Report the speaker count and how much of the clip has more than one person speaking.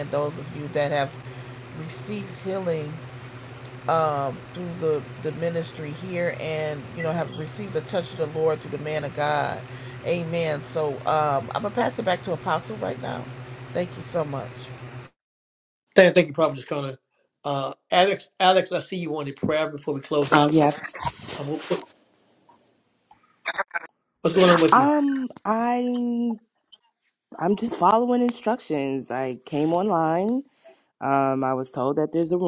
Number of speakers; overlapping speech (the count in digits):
3, about 2%